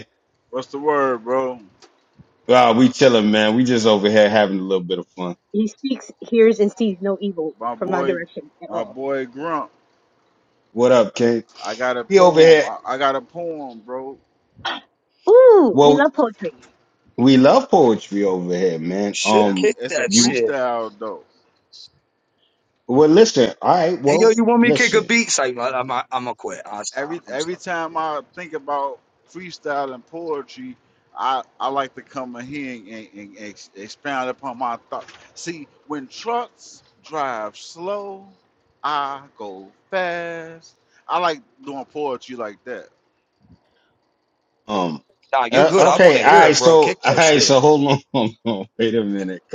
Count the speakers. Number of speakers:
4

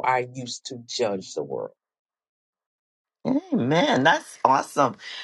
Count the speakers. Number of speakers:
2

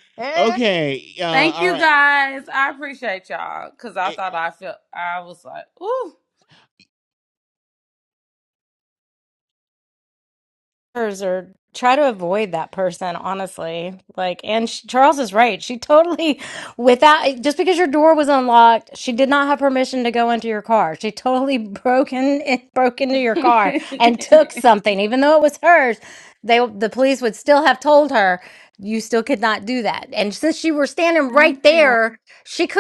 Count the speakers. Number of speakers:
3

